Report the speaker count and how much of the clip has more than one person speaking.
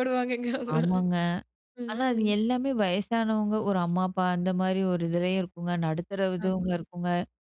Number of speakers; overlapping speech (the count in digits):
2, about 11%